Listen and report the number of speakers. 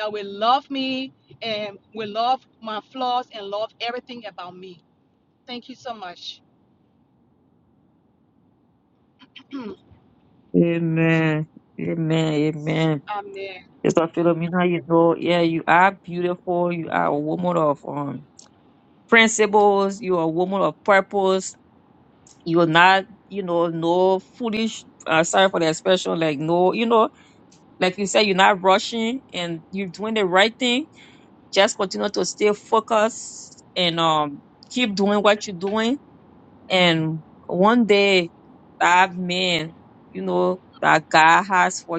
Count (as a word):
two